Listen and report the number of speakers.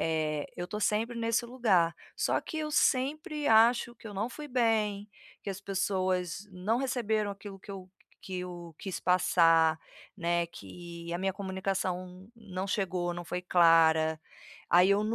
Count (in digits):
1